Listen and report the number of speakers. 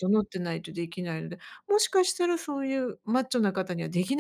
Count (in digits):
1